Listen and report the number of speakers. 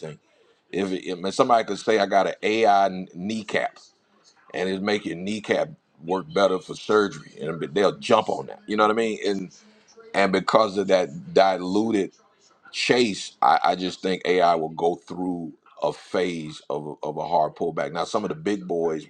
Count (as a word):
one